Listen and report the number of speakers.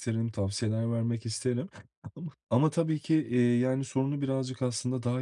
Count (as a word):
one